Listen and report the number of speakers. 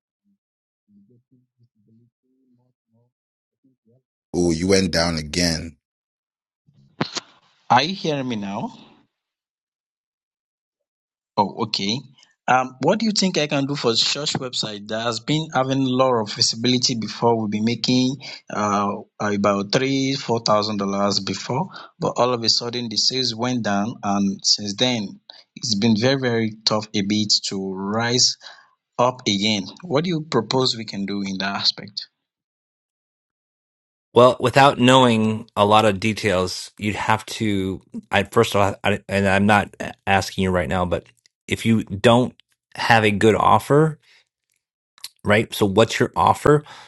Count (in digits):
3